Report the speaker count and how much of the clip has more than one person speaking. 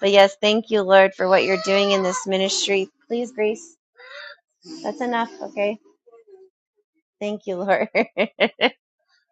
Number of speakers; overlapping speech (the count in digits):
1, no overlap